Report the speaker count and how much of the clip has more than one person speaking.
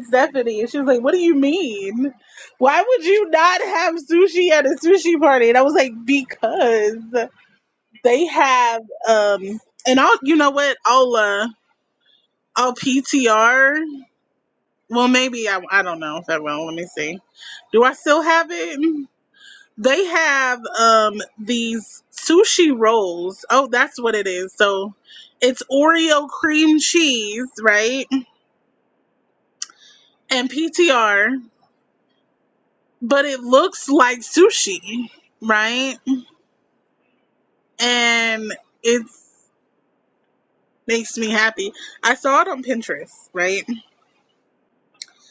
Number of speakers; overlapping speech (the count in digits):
1, no overlap